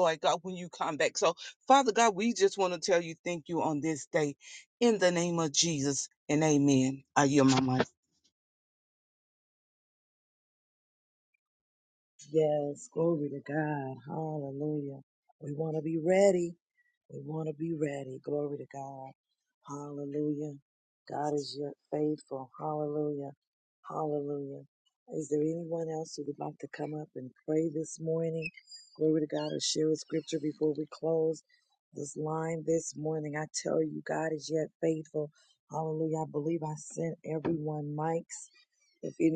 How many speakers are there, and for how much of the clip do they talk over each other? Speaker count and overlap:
2, no overlap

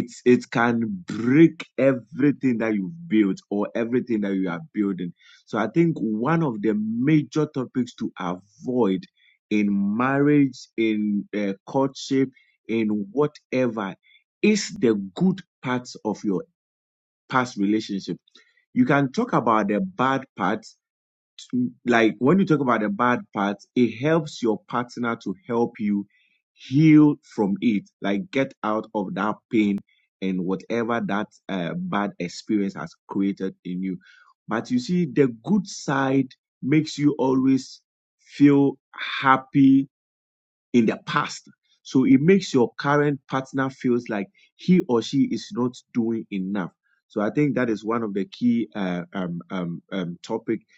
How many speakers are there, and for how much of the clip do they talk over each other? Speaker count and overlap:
1, no overlap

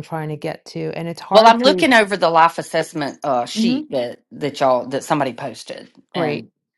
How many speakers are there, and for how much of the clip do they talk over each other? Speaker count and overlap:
2, about 17%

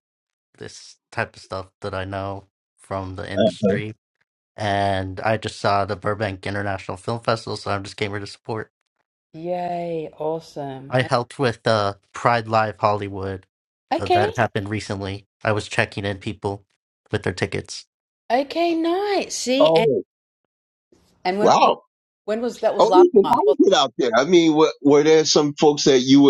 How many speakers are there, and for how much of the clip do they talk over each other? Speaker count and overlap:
3, about 7%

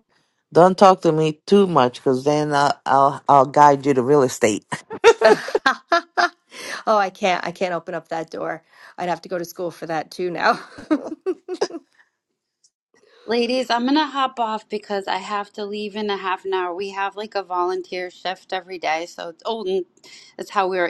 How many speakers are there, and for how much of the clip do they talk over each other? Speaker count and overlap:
3, no overlap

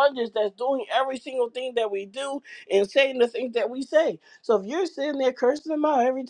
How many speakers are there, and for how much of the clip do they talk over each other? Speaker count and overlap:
1, no overlap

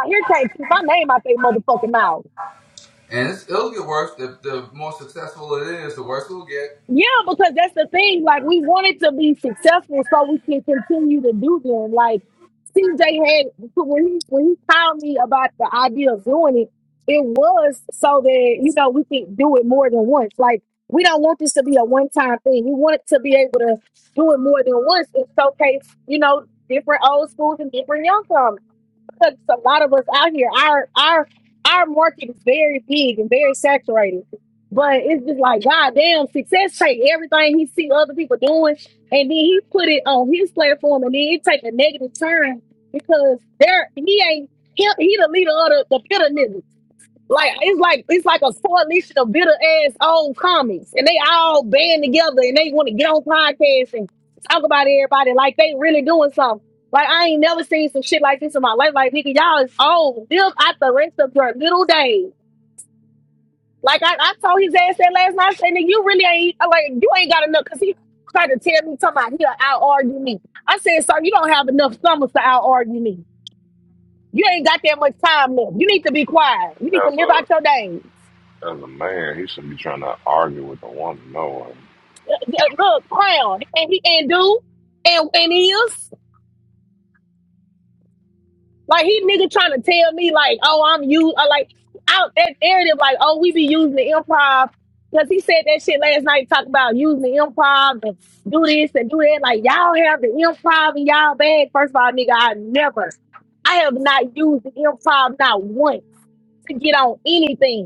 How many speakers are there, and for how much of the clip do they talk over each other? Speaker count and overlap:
3, about 1%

